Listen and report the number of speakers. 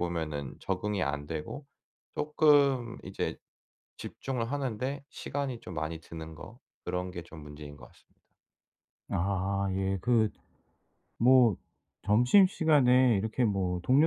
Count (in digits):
2